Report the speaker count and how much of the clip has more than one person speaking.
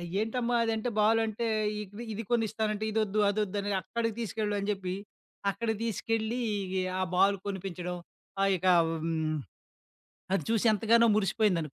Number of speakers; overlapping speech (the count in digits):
1, no overlap